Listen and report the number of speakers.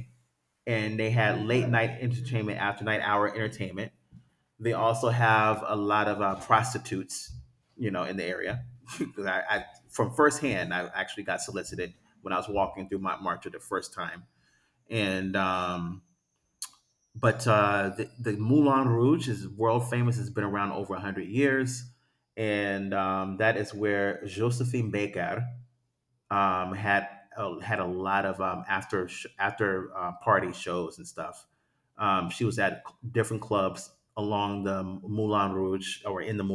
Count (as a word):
one